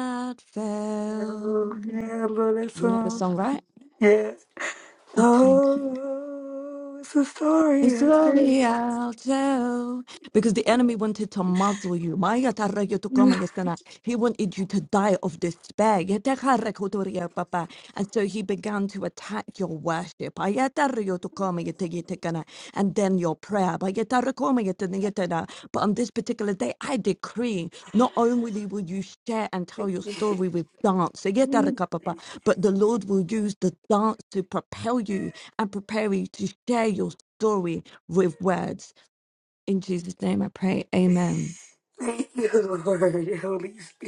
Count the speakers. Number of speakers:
2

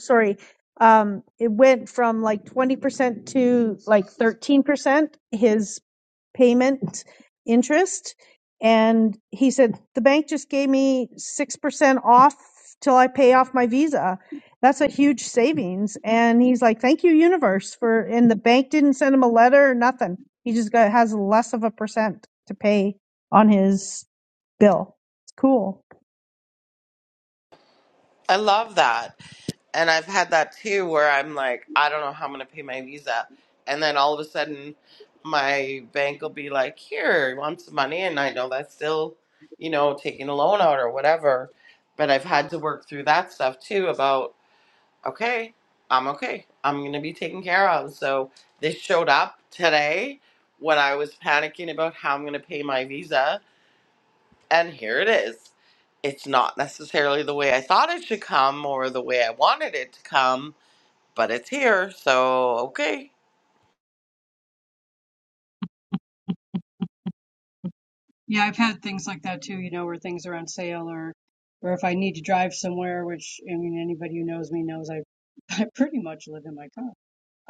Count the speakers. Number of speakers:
3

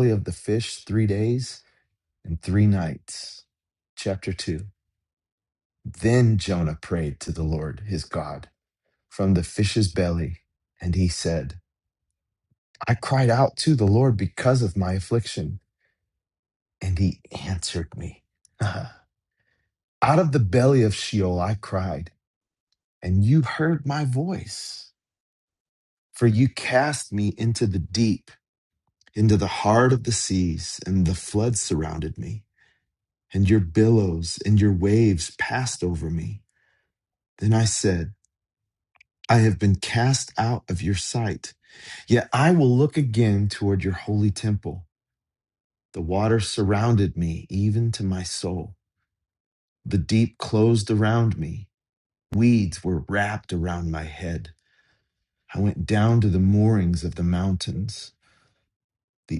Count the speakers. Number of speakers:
1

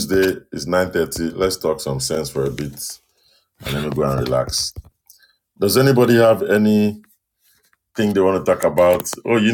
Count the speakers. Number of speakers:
1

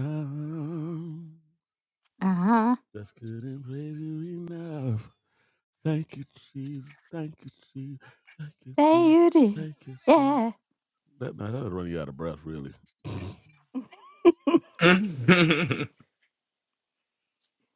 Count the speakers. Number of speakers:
3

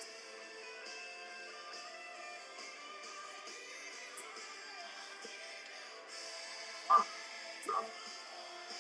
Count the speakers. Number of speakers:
0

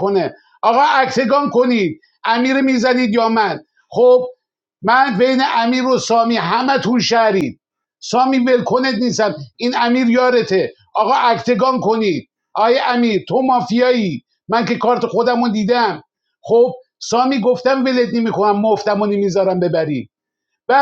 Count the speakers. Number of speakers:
1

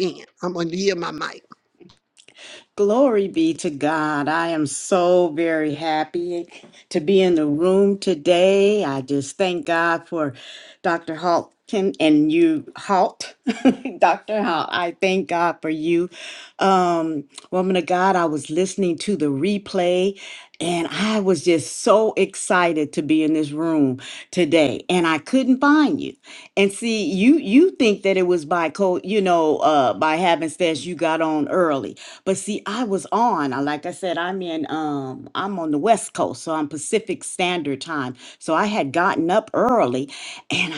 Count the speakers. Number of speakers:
2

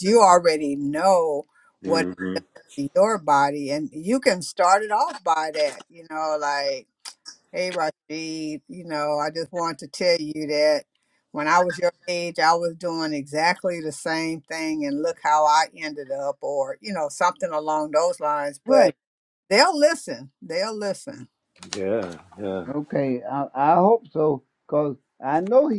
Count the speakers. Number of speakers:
3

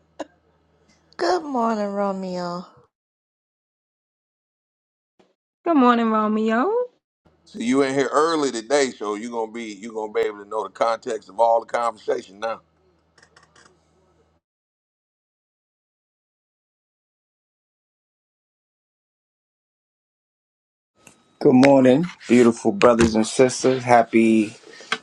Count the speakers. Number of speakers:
4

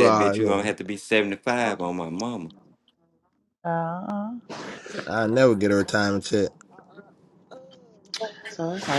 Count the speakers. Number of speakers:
3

